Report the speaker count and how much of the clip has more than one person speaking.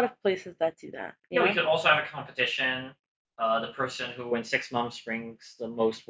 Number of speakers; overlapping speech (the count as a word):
two, about 4%